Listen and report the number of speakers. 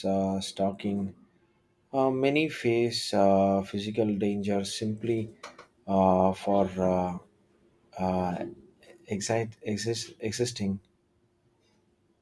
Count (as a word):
one